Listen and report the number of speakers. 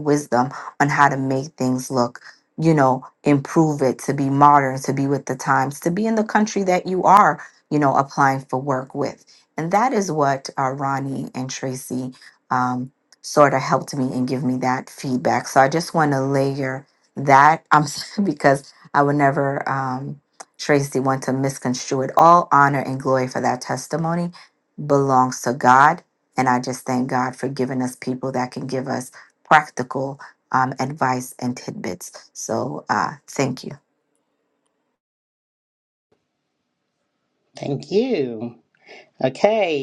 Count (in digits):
2